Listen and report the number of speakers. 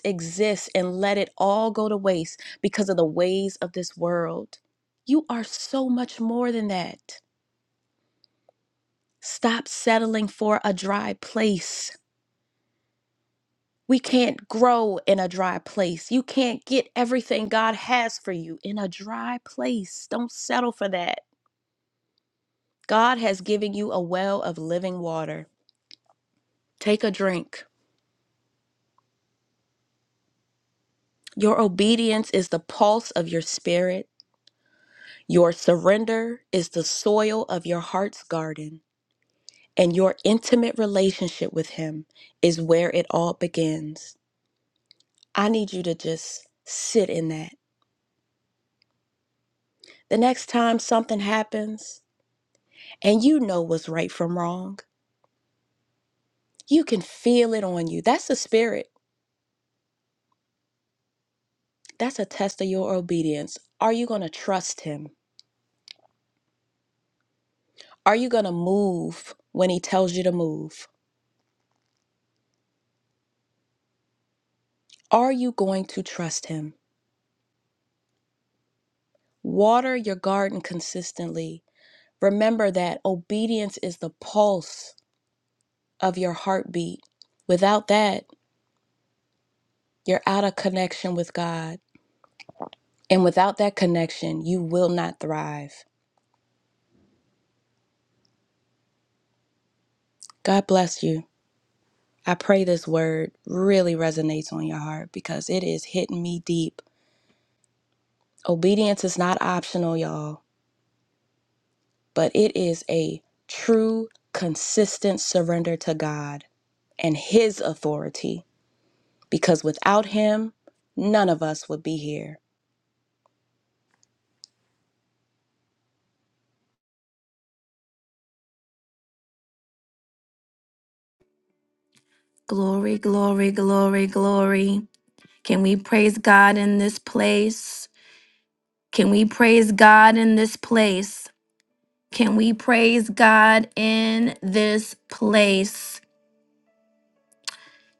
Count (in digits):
2